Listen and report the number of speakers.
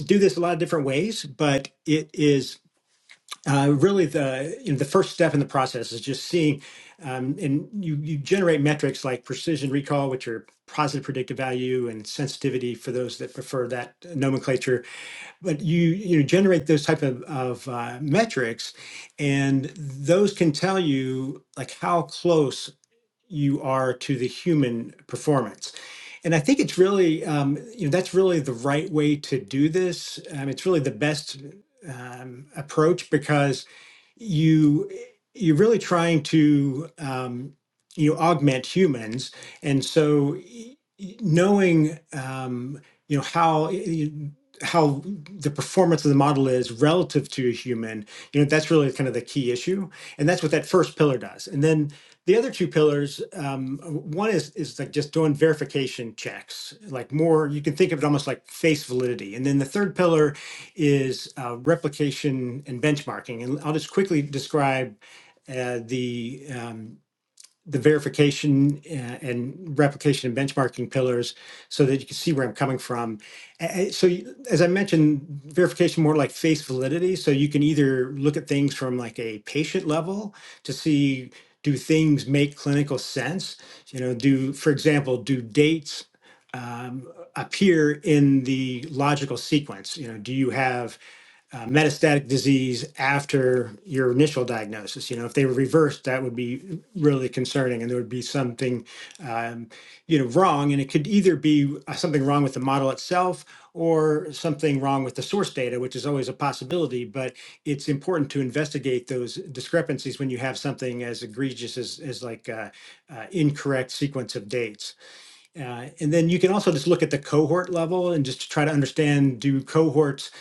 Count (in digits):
1